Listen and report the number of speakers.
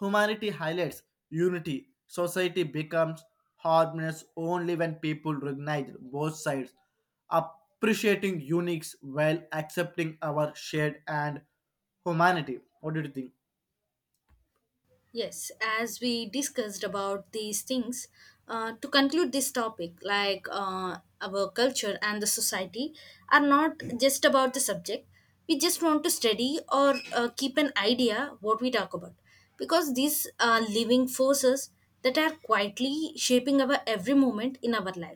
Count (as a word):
two